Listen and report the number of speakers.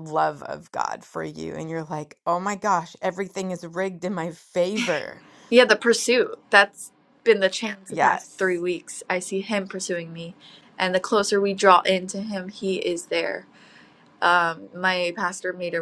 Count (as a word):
two